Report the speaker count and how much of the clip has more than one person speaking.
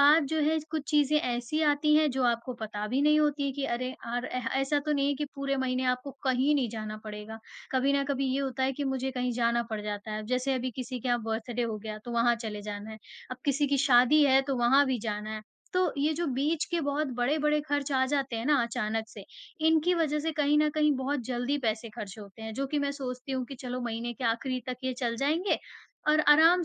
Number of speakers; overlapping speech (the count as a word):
one, no overlap